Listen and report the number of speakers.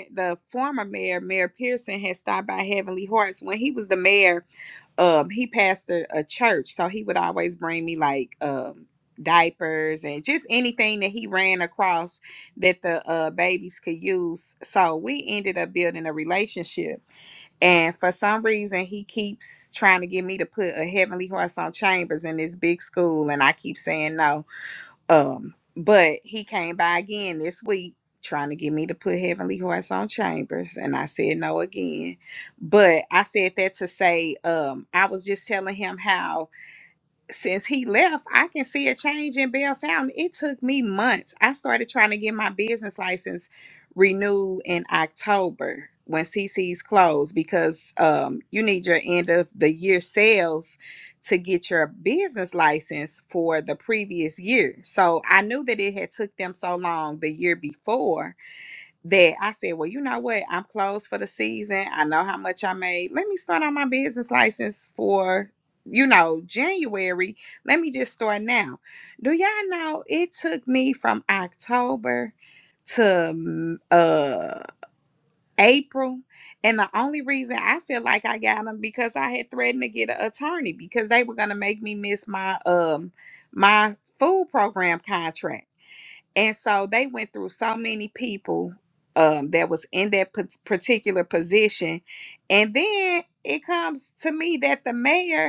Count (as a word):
one